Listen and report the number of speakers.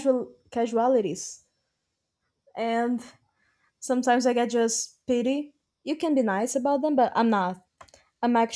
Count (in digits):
1